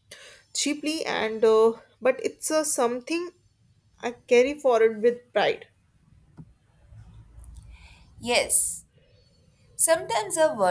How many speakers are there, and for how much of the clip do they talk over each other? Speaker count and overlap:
two, no overlap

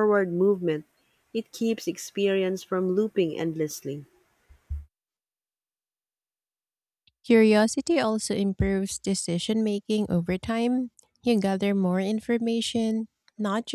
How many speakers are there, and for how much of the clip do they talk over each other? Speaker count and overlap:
two, no overlap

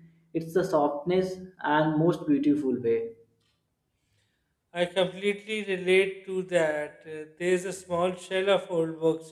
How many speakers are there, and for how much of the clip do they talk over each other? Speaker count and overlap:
two, no overlap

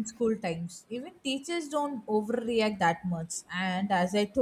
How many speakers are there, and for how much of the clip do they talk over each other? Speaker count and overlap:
one, no overlap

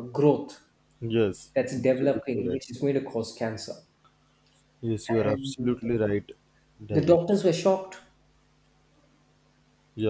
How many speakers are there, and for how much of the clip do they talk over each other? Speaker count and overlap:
two, about 15%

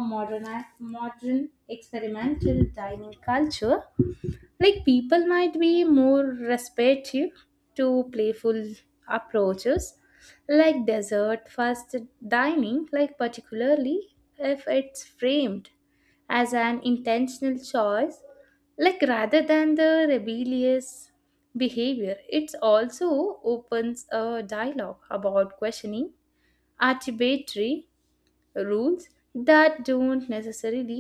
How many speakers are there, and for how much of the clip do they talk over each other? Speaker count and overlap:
one, no overlap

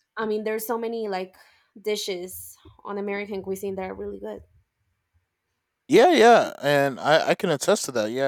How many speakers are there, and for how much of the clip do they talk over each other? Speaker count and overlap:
two, no overlap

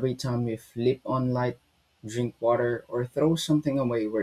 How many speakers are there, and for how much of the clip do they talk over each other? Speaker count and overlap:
one, no overlap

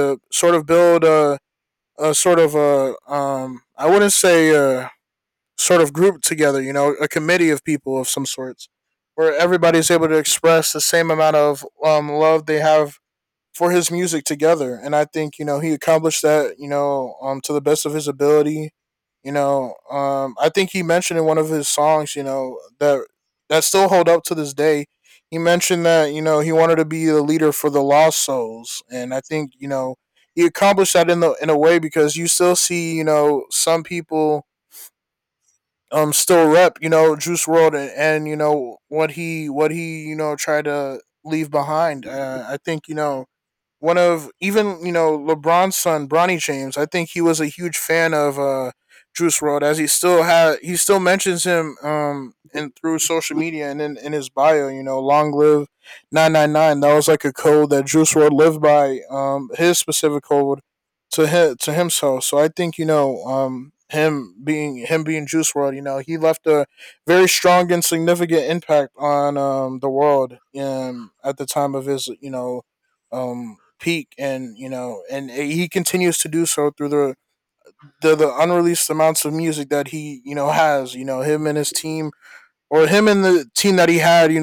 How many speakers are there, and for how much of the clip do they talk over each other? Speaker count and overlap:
one, no overlap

